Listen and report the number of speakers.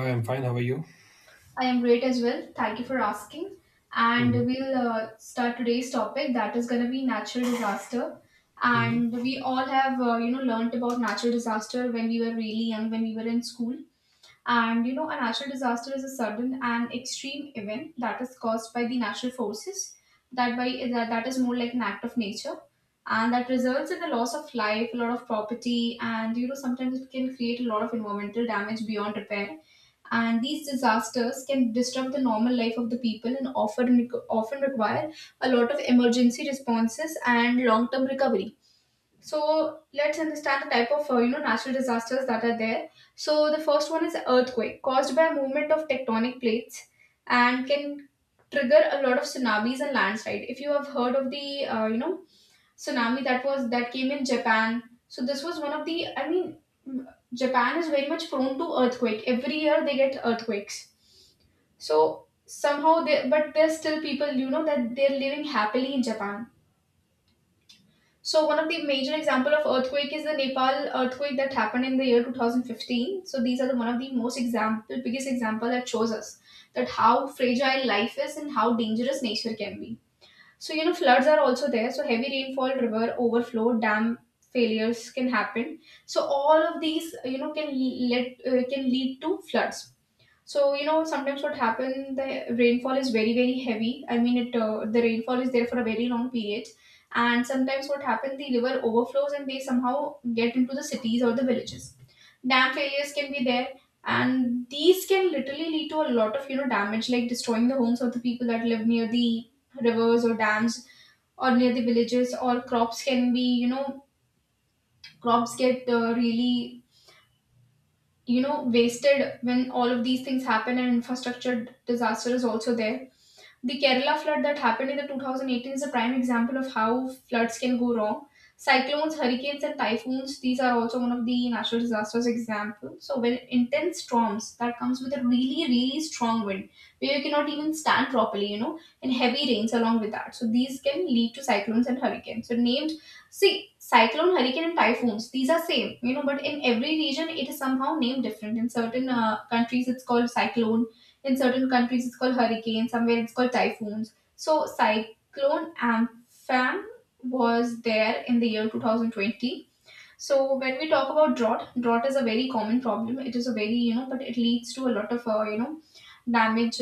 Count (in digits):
2